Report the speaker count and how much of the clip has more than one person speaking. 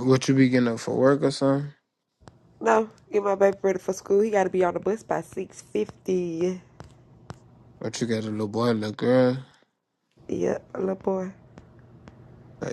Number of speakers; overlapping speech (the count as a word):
two, no overlap